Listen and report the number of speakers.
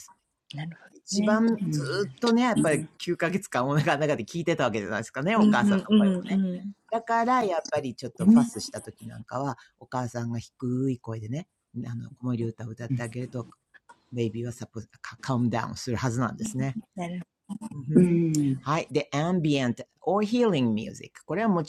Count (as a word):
three